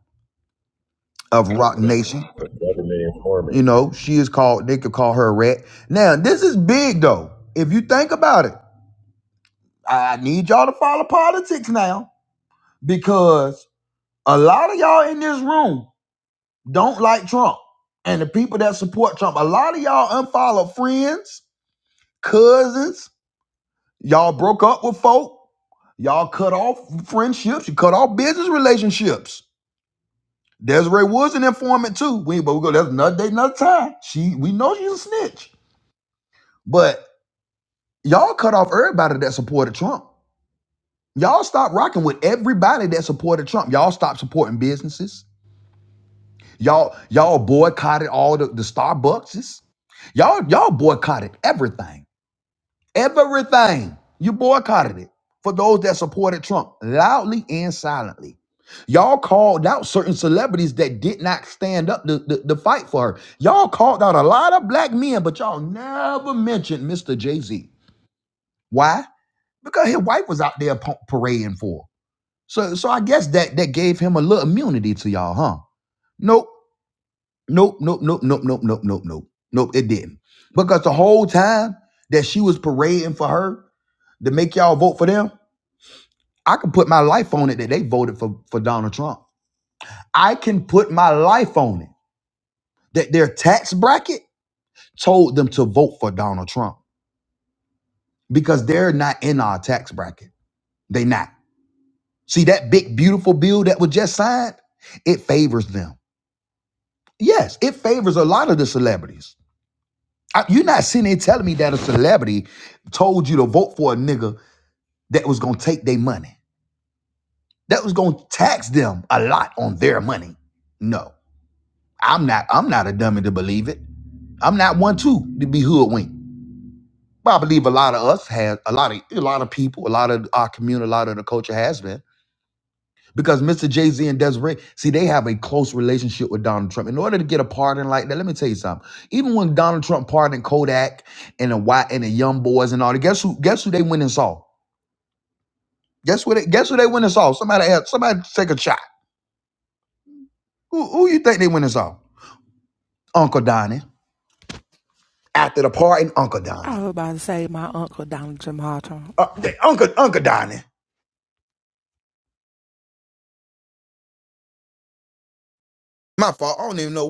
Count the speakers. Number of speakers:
3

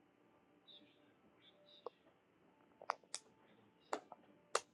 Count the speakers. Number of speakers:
0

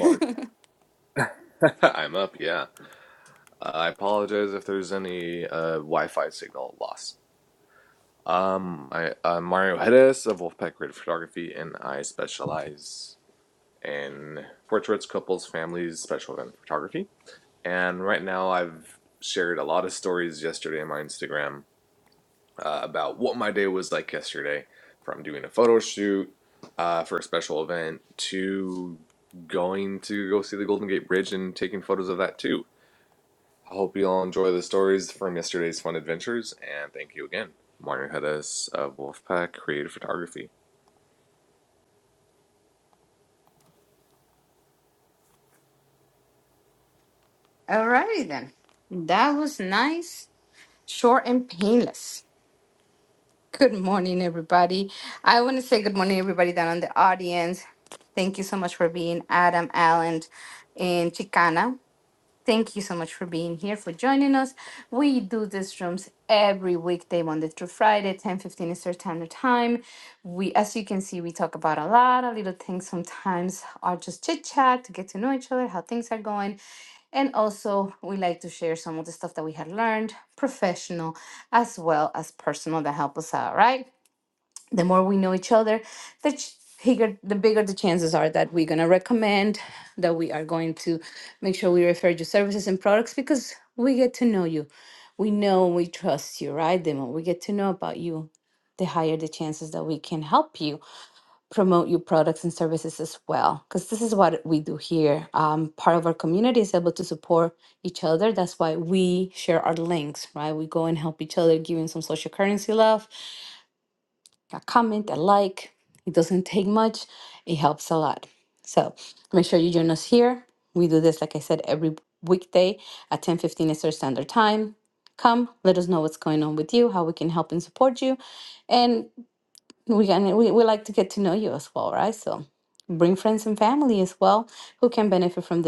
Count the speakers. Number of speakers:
2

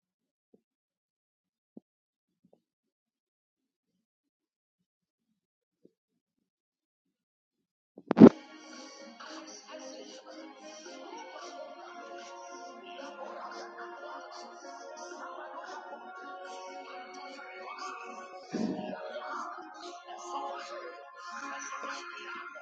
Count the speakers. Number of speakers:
0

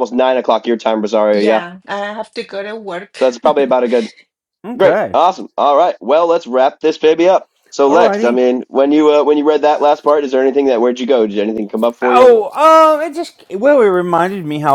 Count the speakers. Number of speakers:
3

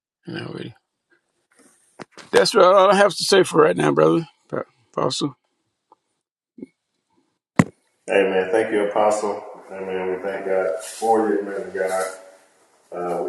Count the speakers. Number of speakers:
2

